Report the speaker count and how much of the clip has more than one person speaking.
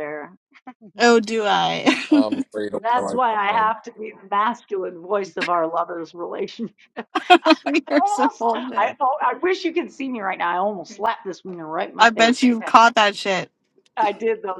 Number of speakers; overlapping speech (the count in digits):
3, about 18%